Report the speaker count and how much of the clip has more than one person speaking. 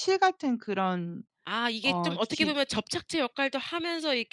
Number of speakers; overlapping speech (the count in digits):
2, about 16%